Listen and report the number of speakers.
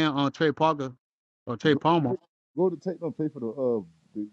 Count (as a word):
two